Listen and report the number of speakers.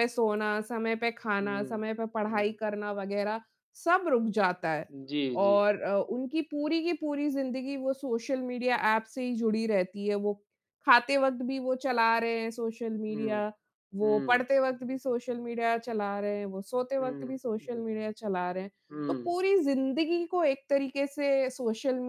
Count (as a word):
two